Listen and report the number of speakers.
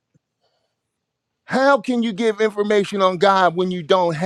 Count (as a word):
one